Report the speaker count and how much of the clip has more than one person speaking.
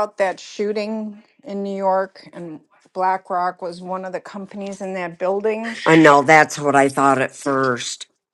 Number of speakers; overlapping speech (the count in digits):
2, no overlap